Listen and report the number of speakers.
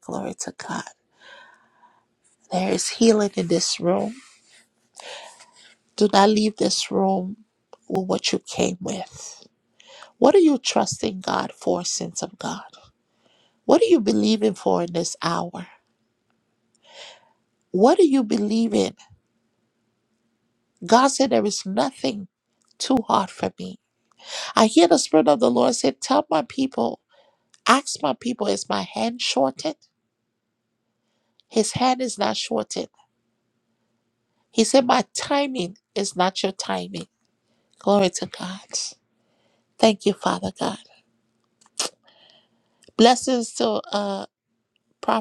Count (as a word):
one